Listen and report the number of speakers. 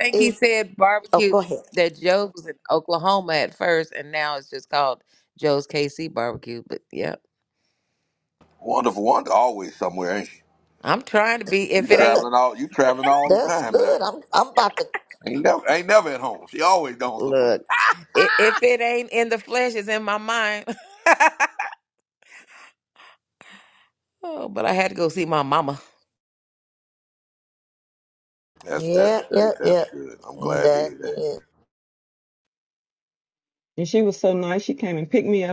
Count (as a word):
four